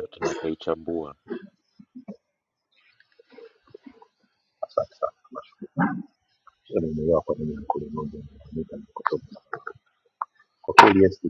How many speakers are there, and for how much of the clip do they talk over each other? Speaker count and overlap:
two, no overlap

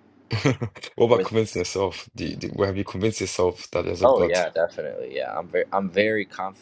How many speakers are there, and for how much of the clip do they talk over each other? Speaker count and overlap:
two, about 9%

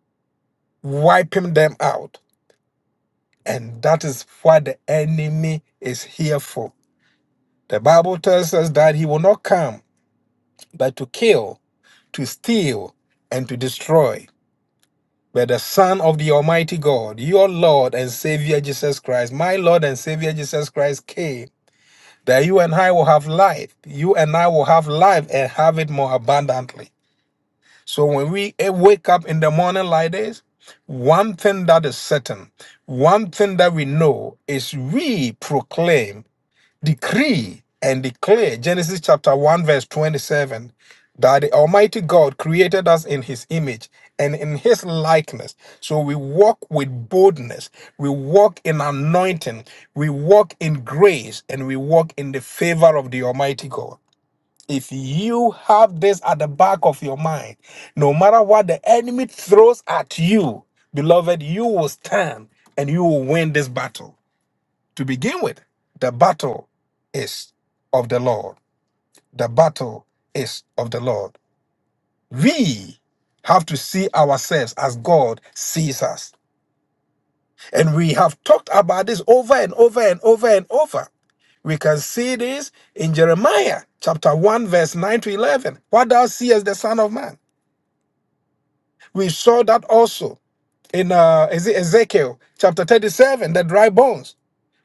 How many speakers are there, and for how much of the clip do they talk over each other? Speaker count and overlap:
one, no overlap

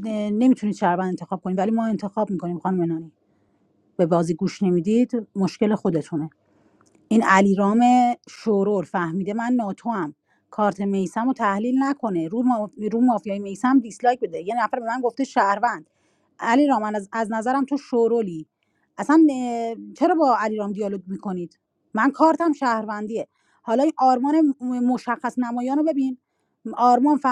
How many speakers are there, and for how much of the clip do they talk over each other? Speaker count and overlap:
one, no overlap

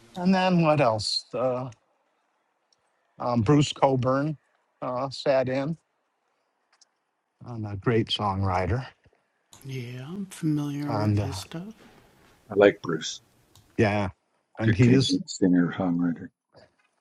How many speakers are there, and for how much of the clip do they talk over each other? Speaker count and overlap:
three, about 7%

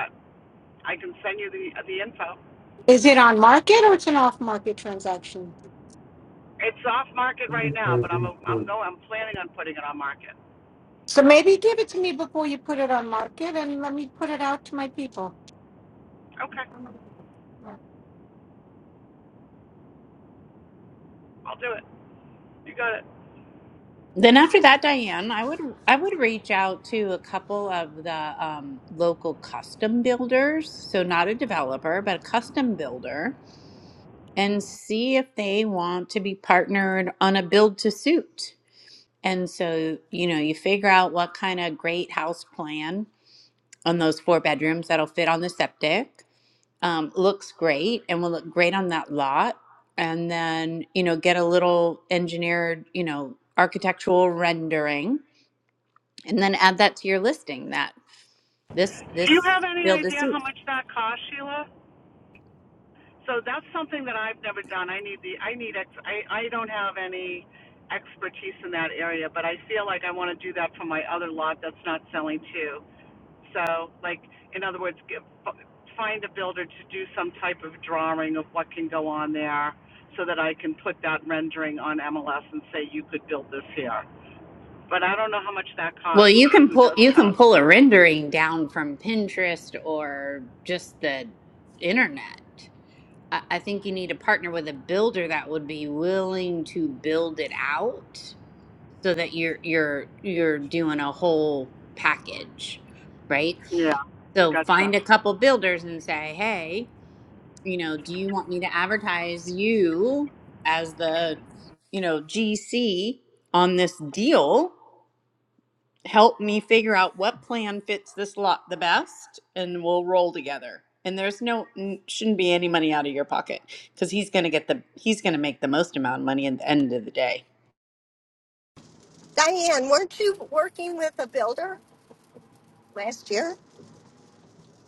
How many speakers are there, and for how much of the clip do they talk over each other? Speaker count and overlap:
four, about 2%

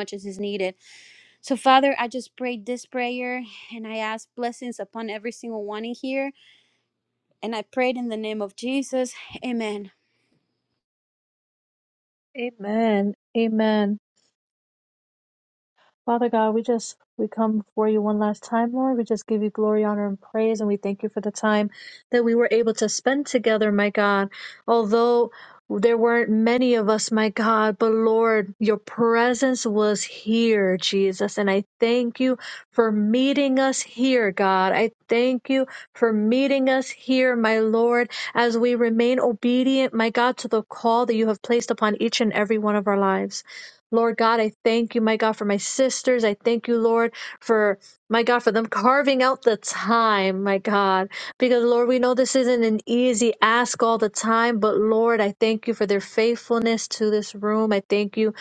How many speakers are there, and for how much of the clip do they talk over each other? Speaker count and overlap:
two, no overlap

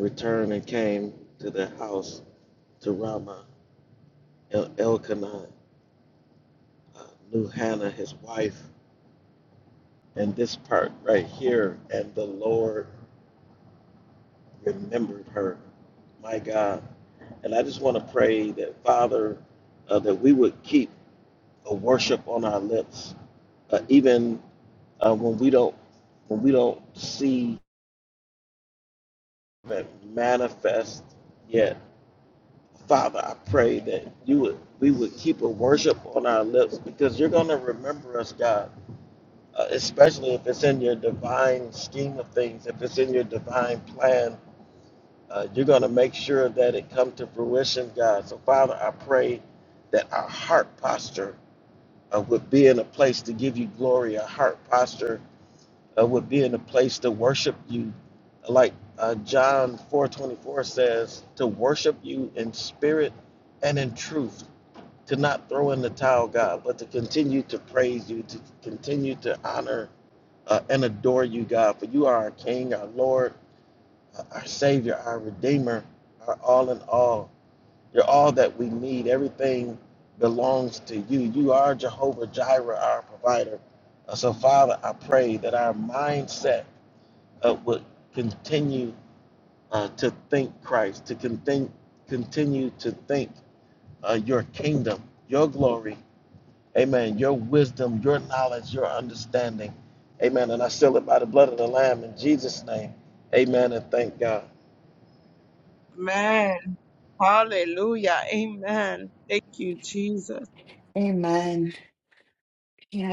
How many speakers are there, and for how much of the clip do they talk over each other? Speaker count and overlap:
three, no overlap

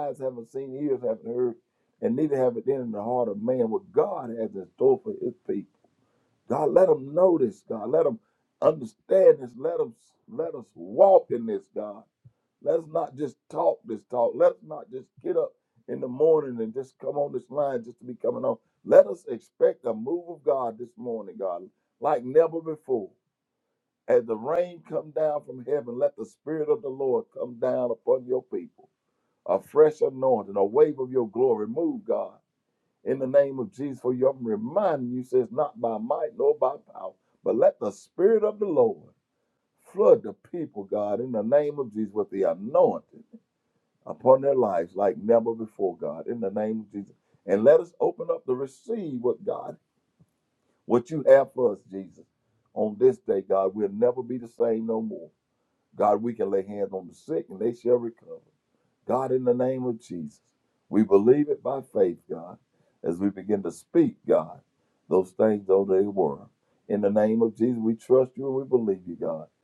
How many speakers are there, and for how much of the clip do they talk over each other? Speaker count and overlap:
one, no overlap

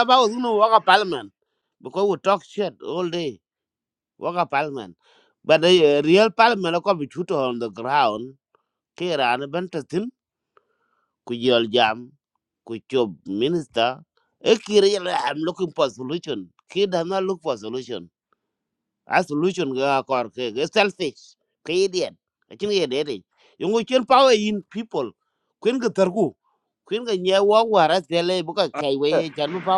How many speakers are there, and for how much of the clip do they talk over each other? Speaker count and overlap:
one, no overlap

